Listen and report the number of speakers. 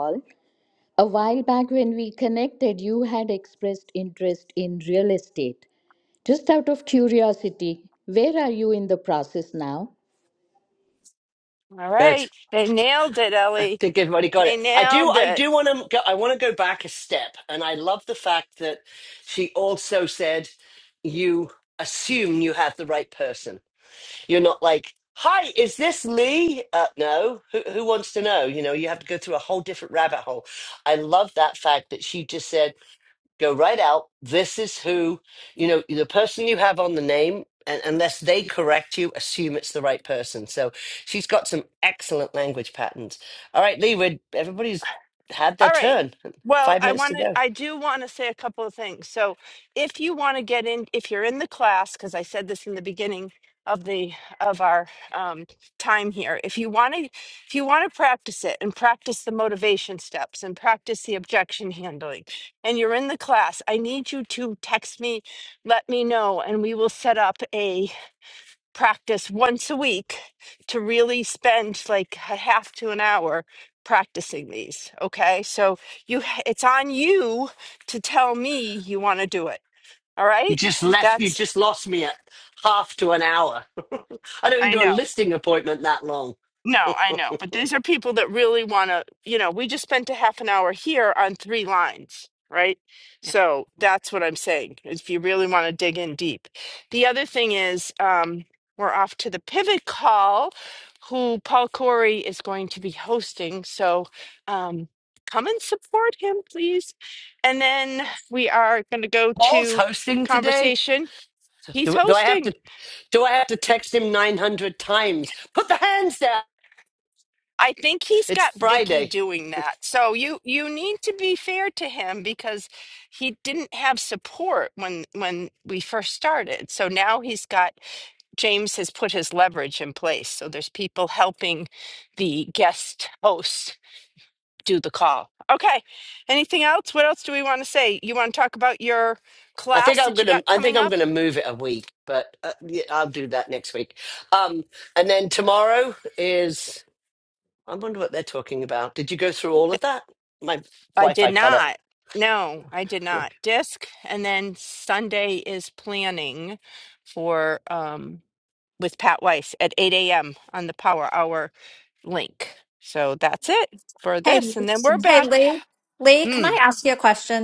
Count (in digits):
4